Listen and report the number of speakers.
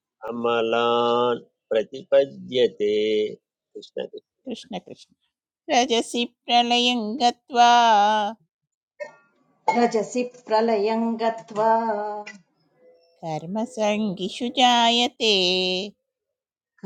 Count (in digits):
3